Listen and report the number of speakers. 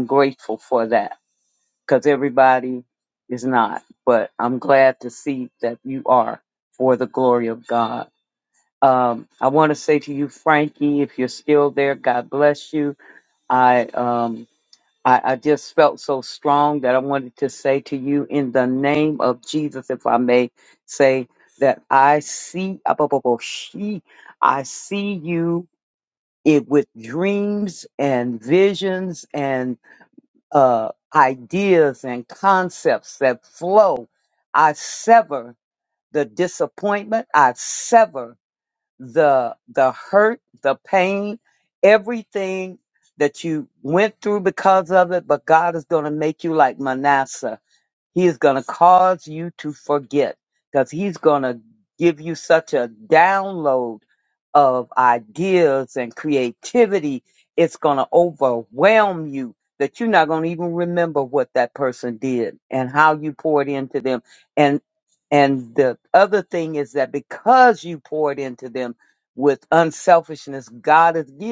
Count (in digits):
1